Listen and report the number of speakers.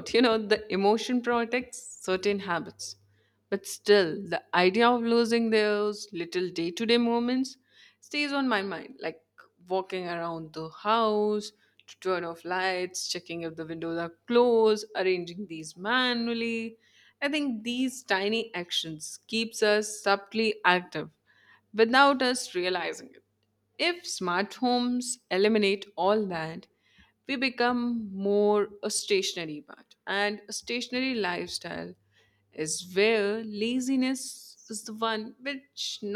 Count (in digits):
1